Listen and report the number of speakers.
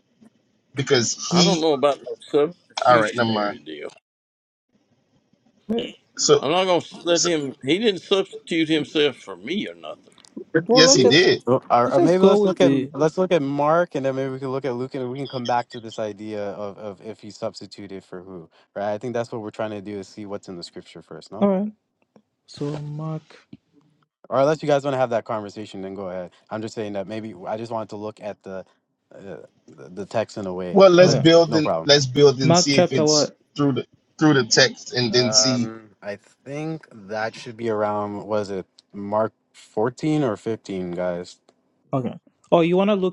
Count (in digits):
4